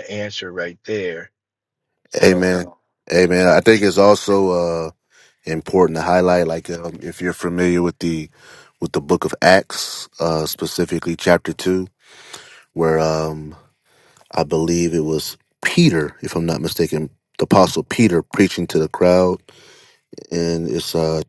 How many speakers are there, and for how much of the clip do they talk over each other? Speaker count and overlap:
two, about 2%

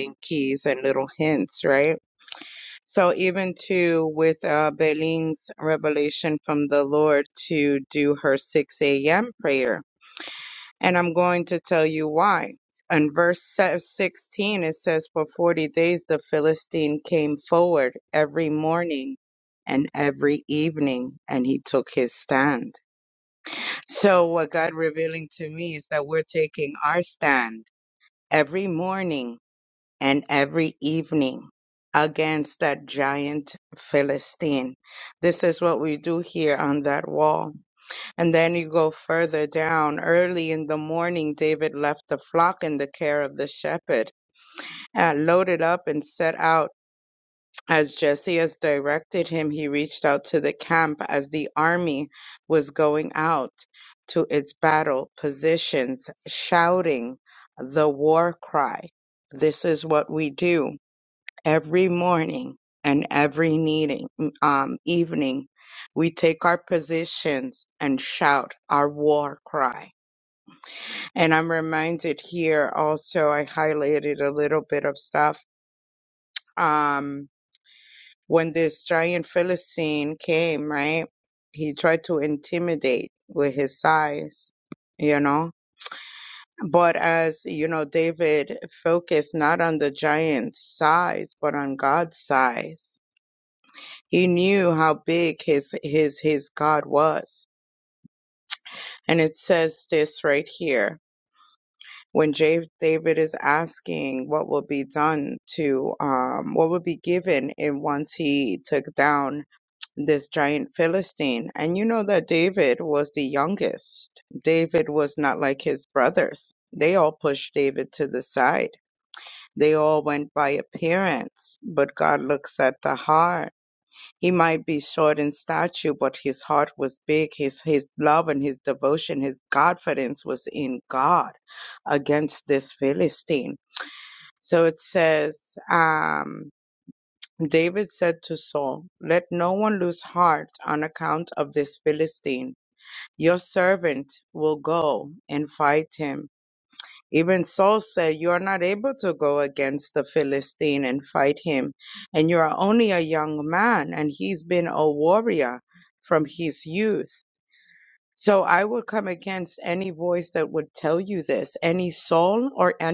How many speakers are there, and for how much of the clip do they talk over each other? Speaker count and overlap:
one, no overlap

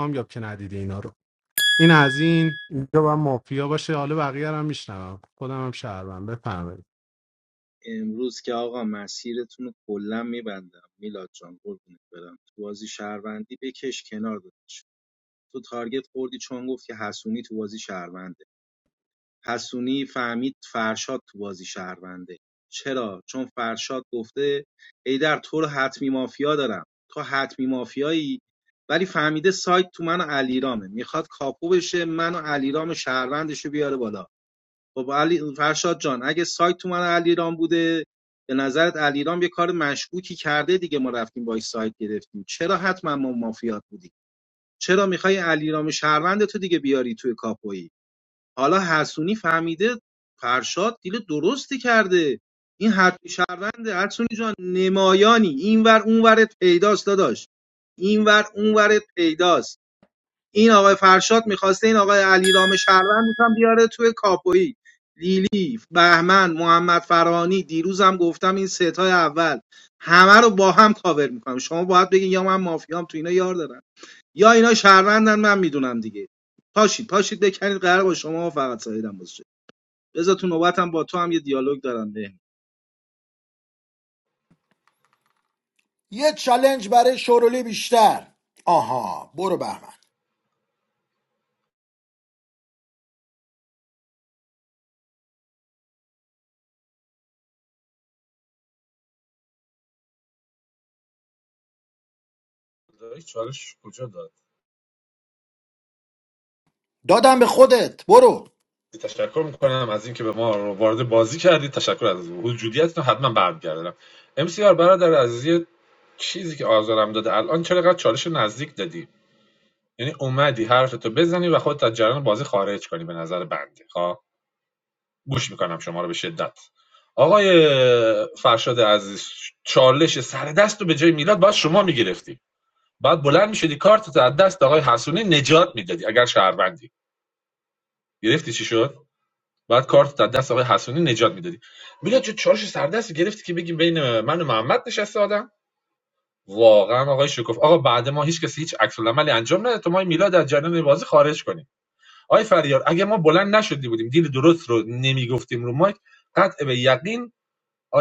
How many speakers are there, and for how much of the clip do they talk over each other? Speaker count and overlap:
four, no overlap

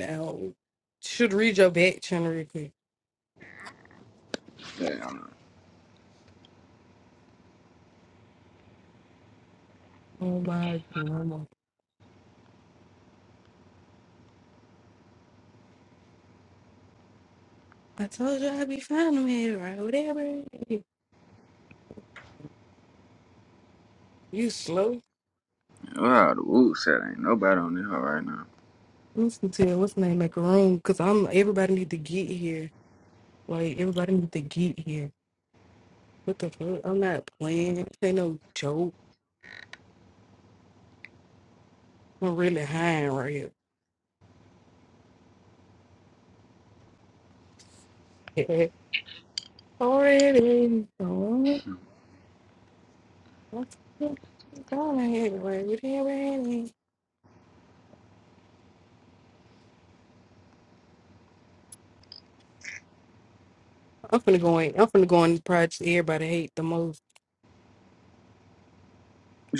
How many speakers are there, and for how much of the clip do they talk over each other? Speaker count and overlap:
two, no overlap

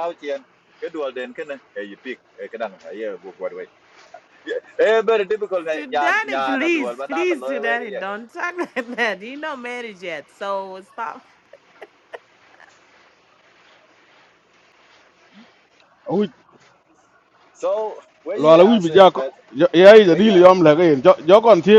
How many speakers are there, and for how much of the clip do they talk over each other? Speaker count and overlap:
three, about 15%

